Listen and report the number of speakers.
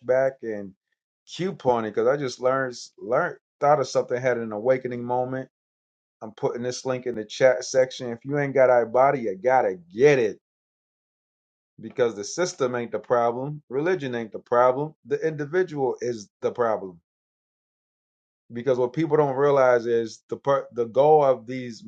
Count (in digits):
1